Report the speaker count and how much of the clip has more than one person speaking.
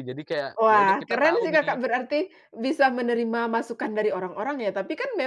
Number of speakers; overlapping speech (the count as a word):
two, about 23%